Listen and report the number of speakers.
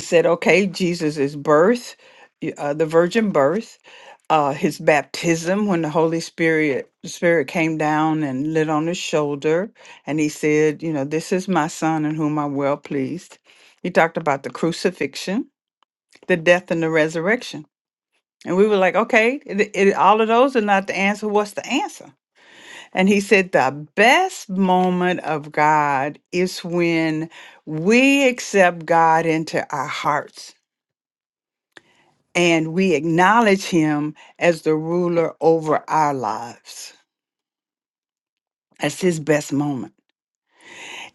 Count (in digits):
1